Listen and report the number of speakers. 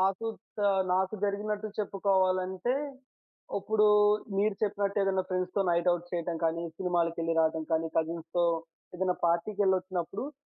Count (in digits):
1